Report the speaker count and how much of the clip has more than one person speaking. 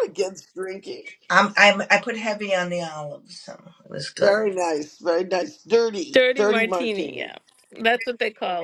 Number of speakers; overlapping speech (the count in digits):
3, about 15%